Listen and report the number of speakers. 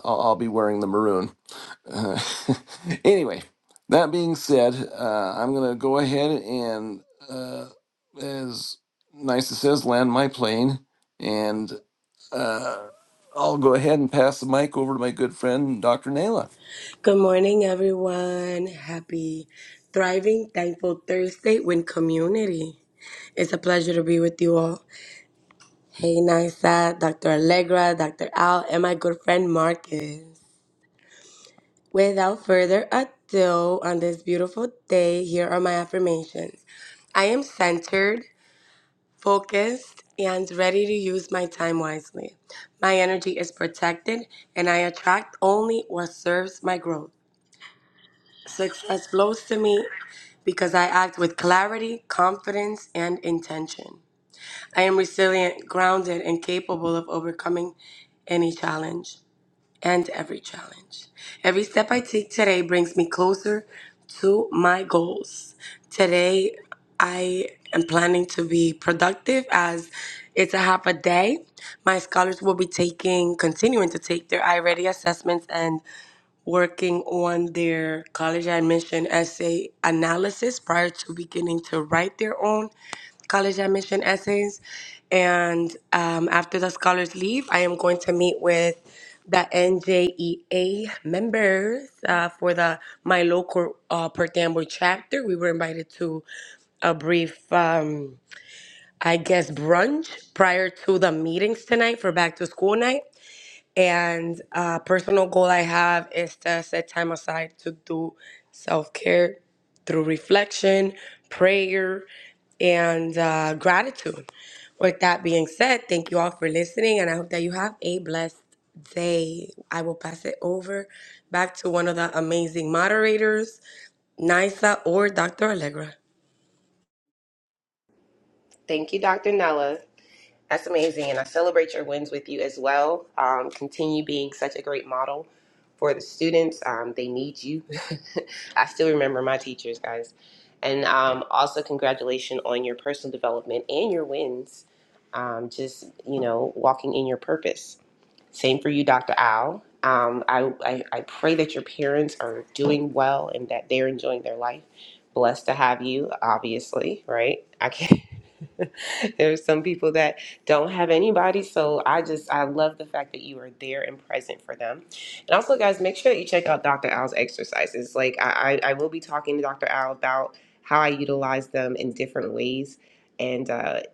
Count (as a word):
three